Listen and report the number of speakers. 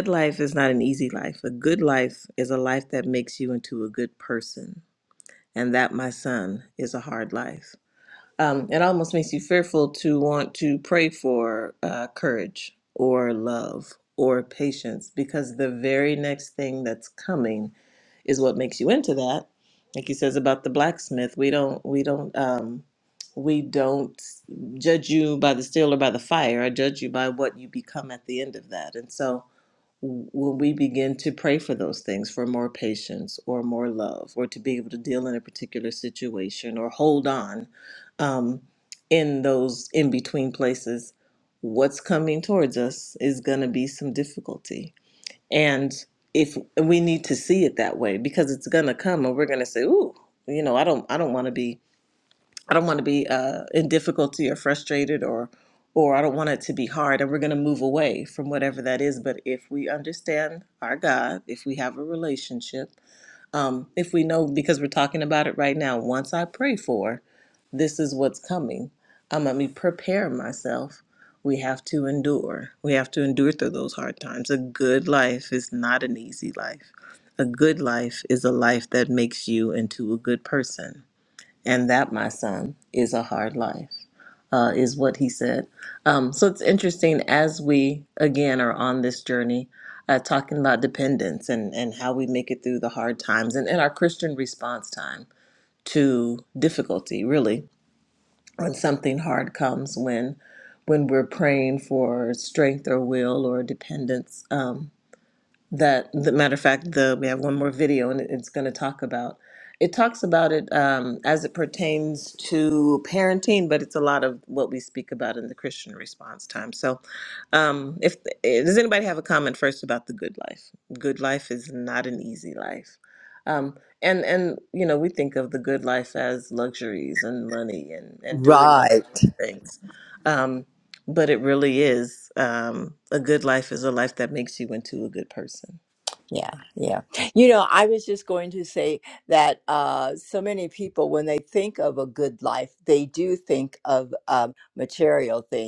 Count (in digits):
2